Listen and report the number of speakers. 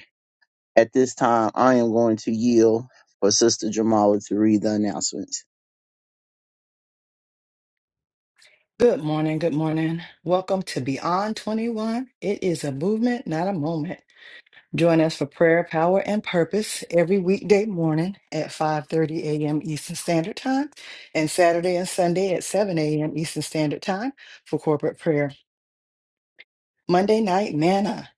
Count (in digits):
2